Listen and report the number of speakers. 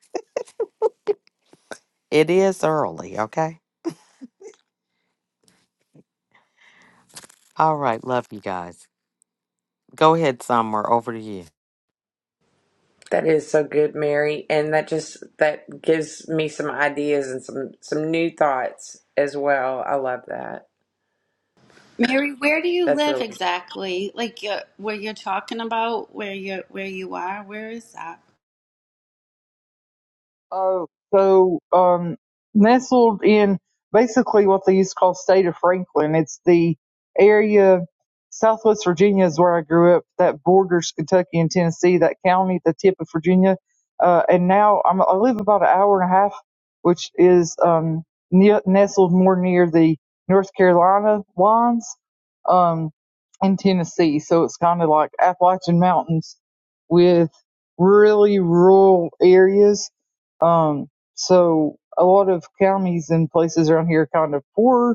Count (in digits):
4